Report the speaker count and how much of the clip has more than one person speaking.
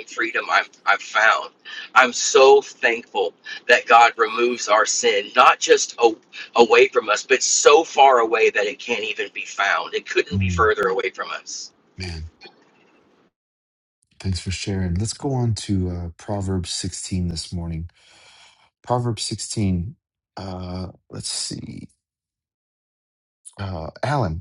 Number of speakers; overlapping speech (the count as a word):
two, about 1%